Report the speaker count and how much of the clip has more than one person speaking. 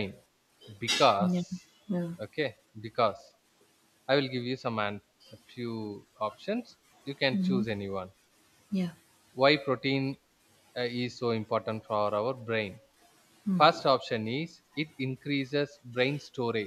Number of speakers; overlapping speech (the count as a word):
two, about 4%